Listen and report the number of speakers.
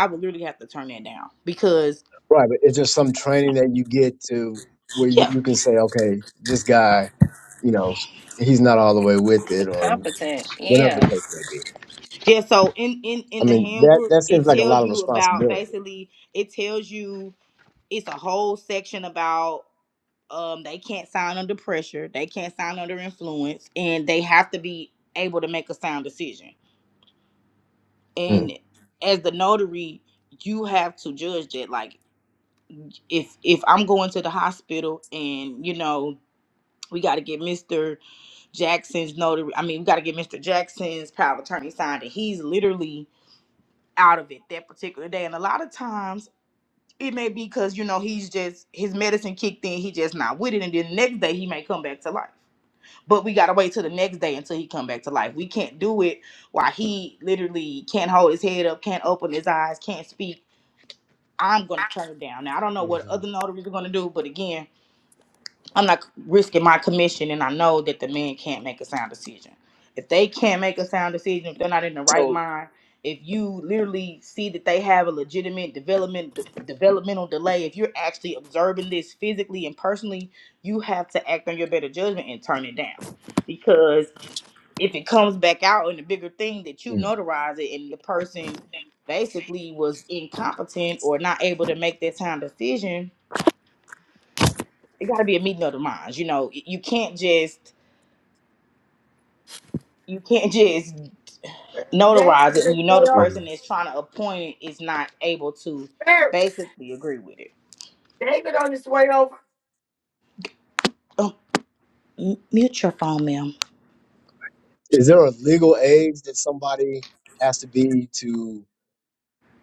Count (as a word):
four